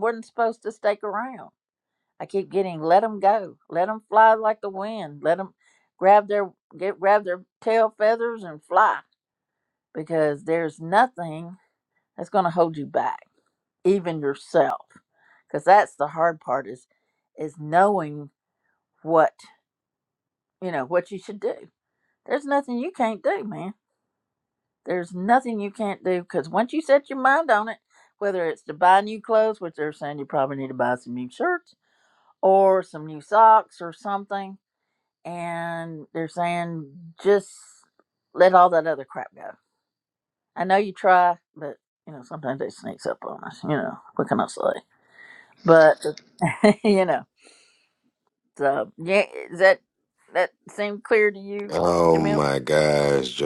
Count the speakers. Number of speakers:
2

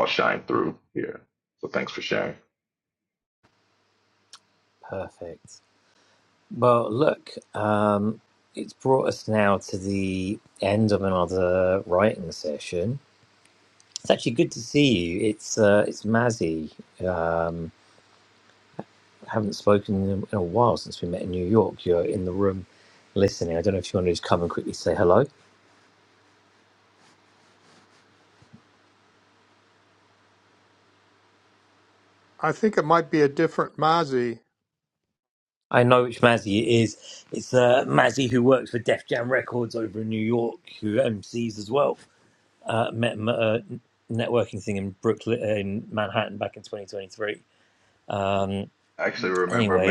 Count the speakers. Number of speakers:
3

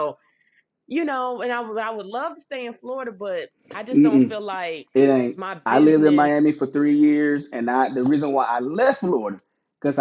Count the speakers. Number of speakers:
2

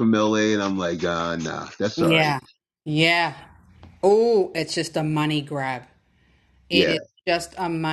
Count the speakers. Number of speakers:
2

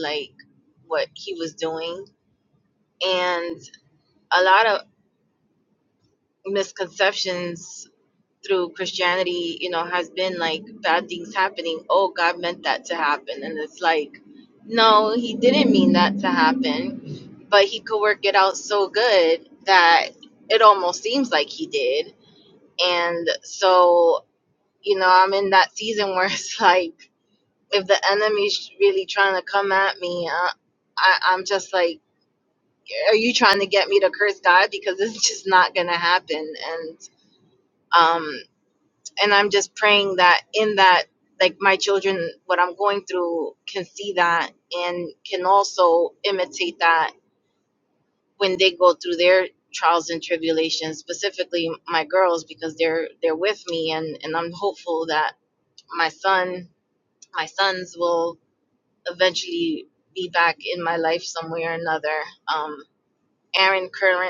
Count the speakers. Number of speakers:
1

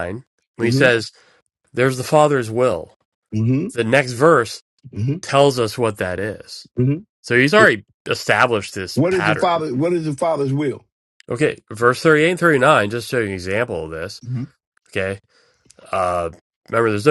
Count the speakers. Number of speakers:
2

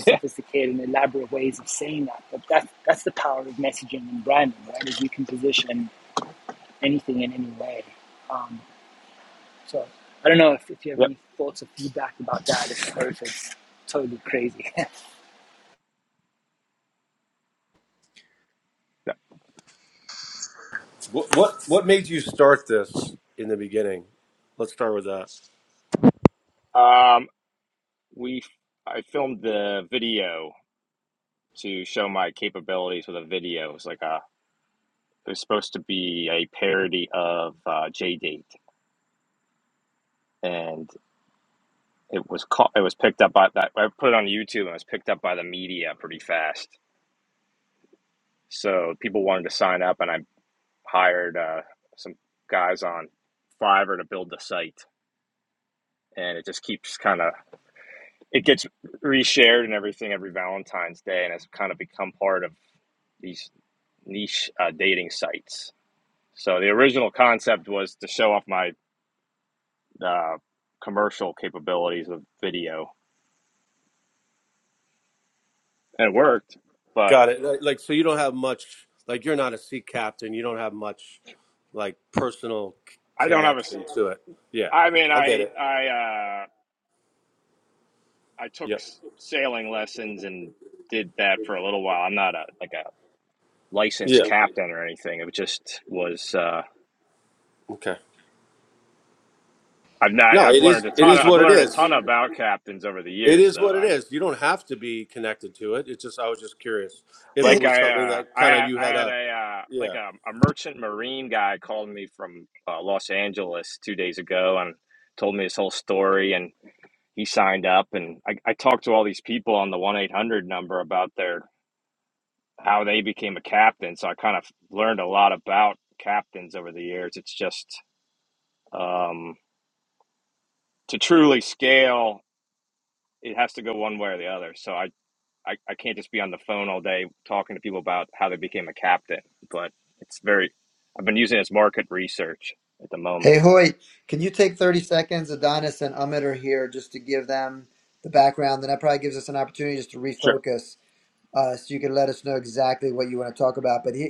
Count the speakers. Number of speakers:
4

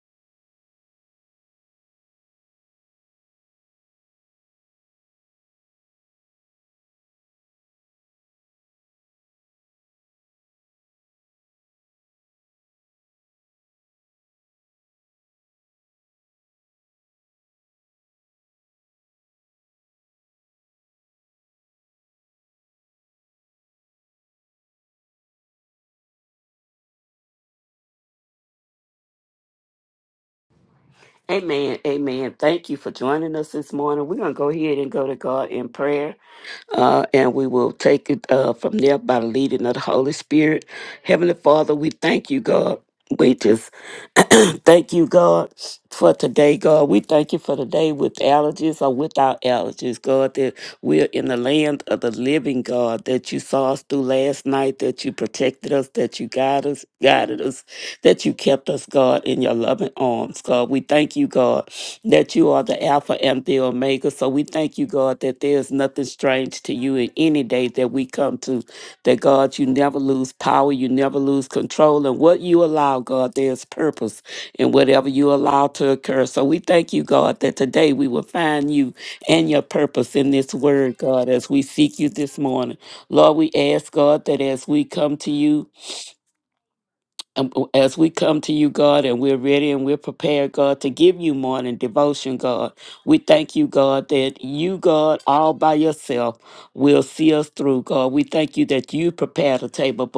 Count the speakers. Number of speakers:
1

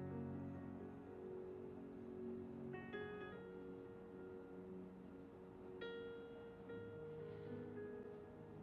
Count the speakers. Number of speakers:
0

